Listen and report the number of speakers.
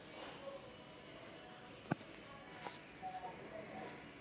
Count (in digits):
0